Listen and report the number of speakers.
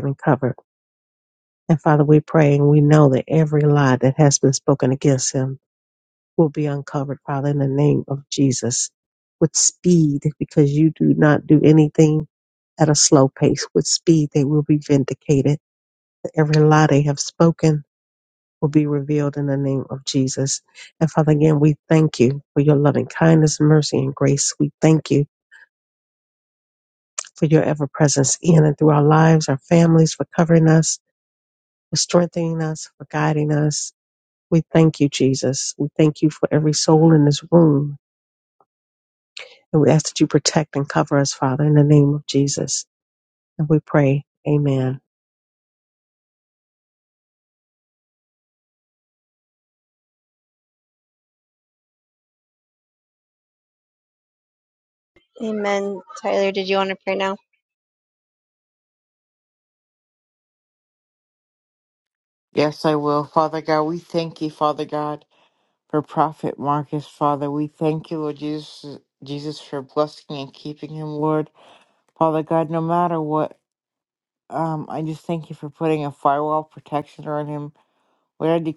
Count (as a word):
three